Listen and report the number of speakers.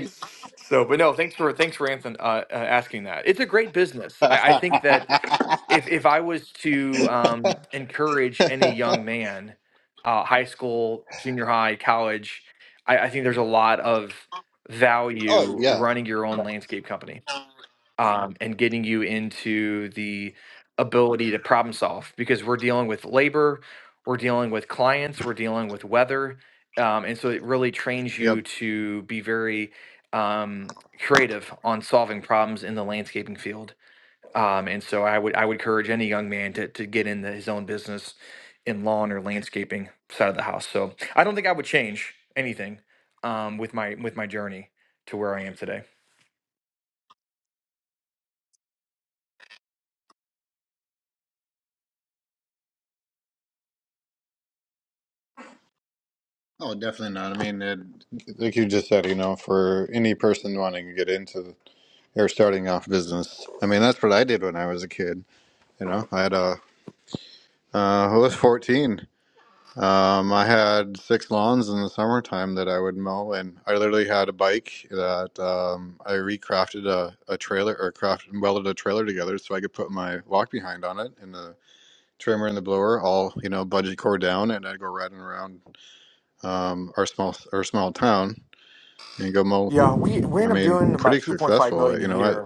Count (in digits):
2